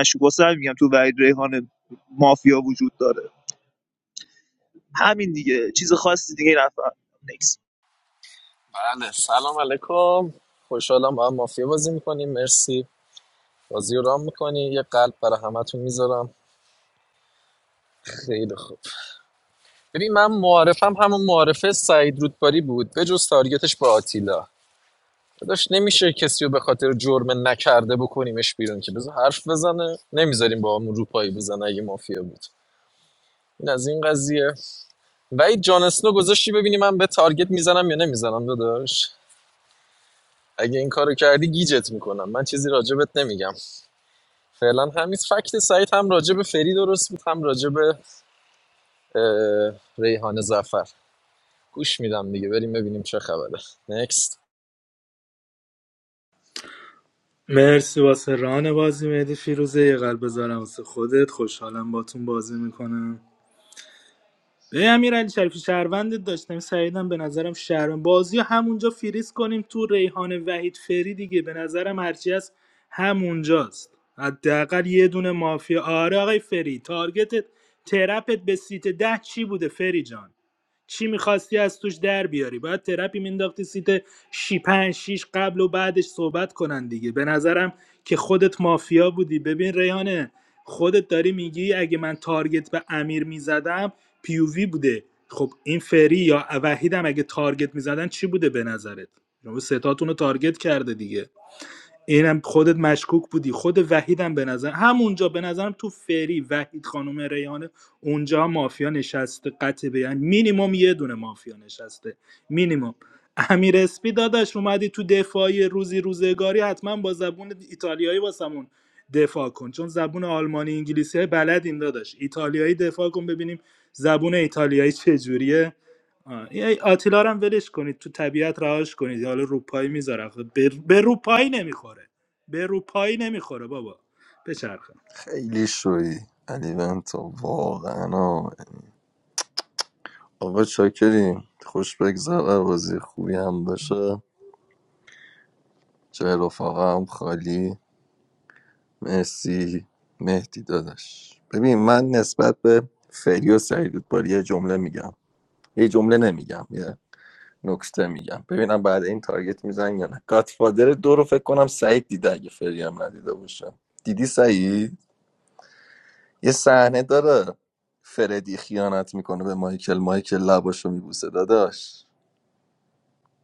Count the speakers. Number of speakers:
4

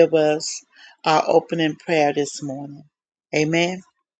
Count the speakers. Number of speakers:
1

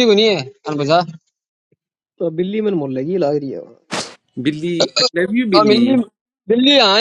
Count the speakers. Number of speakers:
3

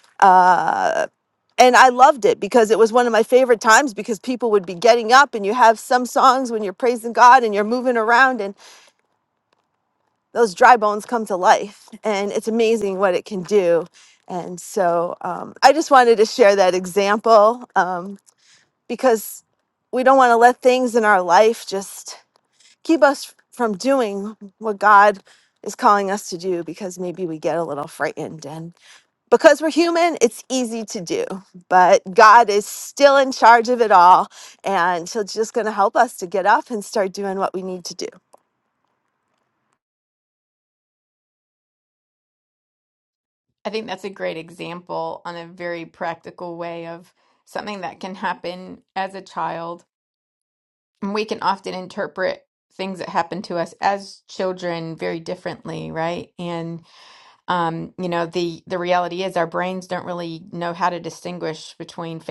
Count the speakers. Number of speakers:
2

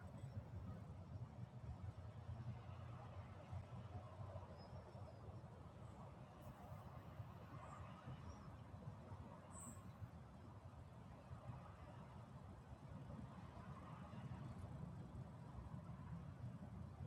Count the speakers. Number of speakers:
0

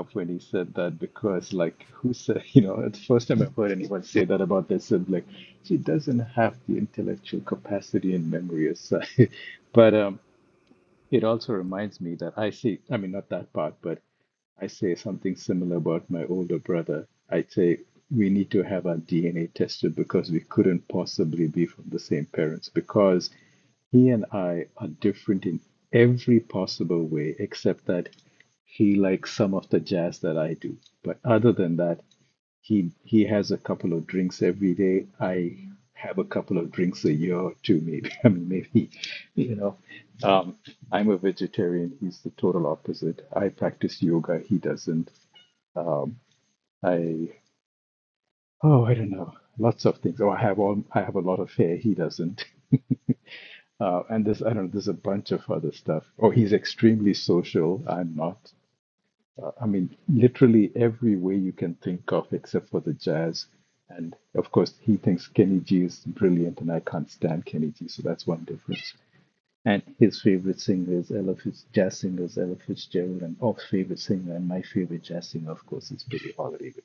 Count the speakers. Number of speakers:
1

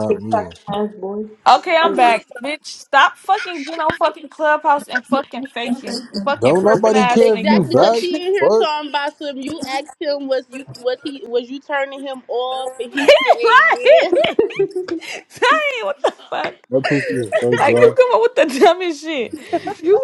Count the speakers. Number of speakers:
4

